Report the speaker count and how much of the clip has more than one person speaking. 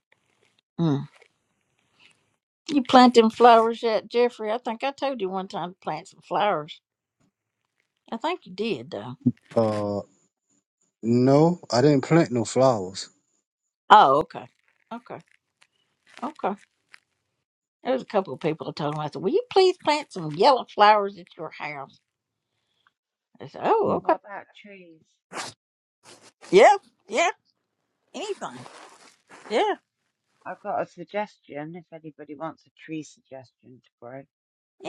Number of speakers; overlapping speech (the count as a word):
three, about 1%